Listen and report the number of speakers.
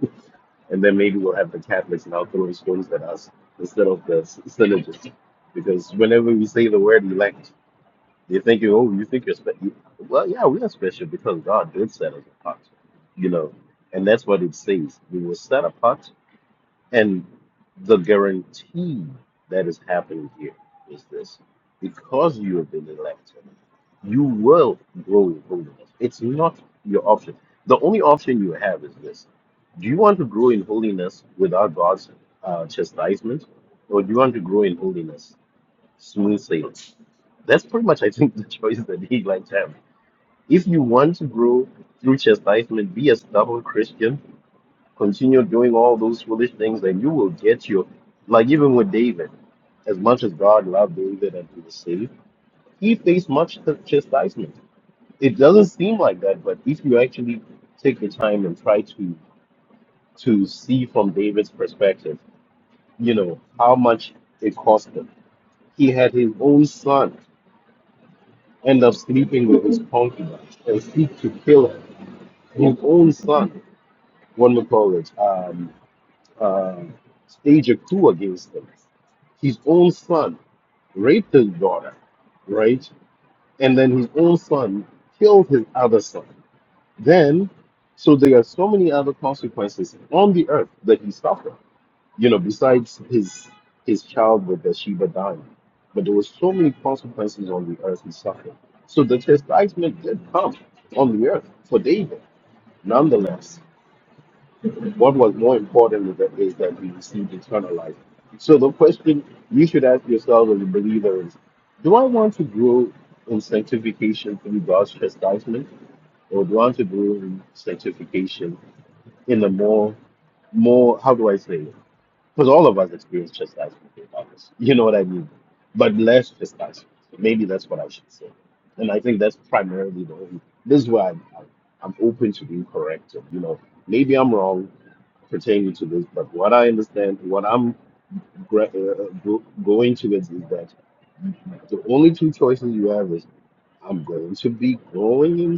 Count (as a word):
one